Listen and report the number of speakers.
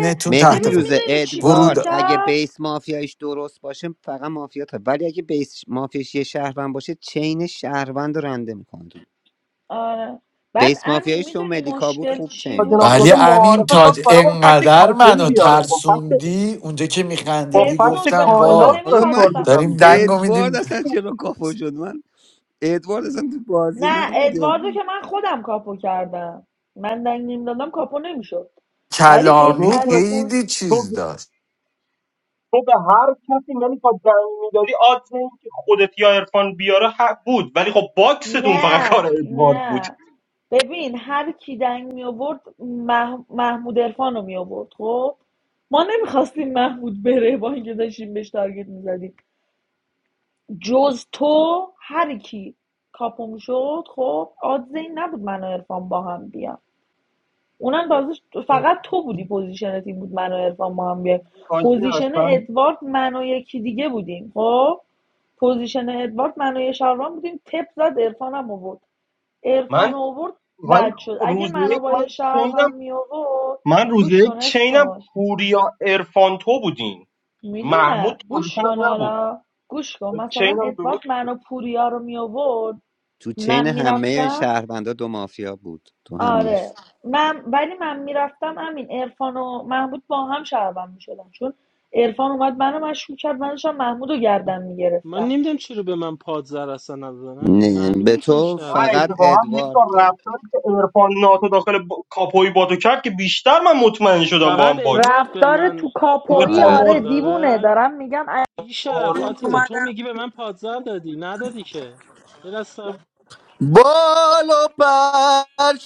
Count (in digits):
6